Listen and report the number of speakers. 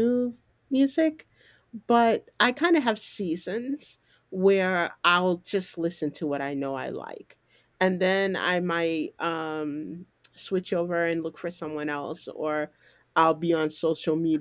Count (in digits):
1